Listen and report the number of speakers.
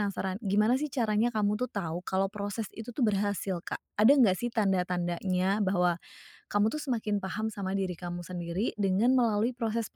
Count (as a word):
one